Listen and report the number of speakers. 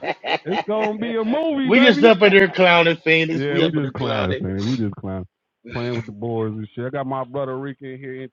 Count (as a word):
two